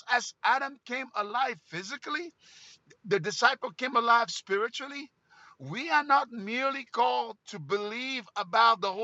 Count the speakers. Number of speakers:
1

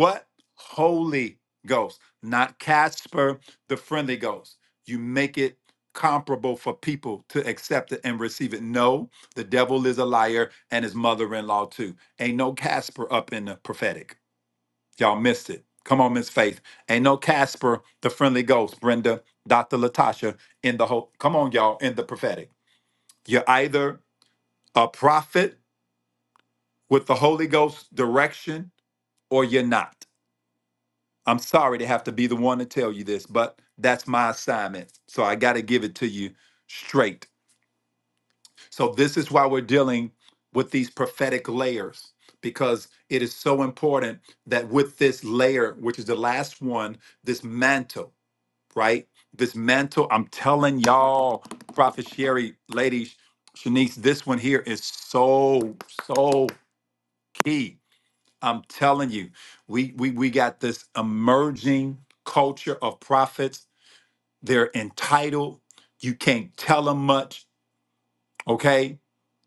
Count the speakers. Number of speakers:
1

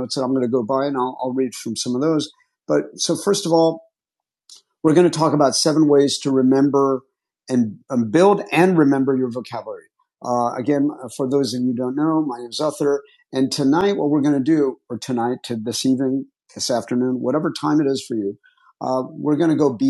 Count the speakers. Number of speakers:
1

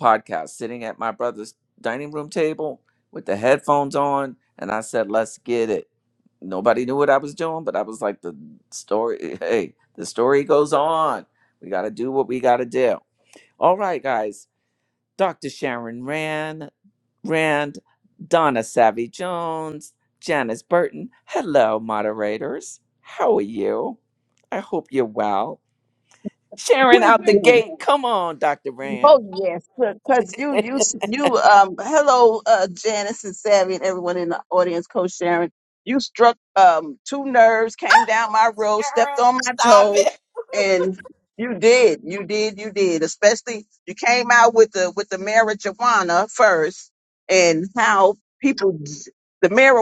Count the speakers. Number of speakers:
2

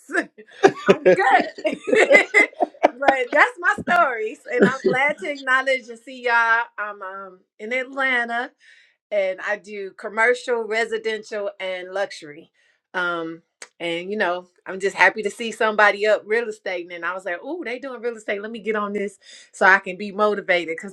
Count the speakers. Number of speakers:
1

